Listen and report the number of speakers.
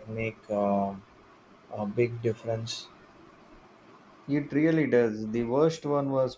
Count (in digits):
2